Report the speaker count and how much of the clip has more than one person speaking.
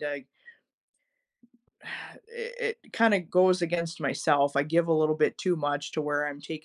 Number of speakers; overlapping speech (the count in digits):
1, no overlap